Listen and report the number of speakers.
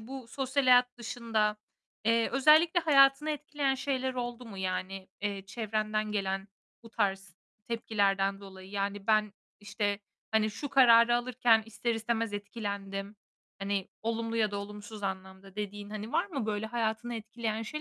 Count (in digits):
1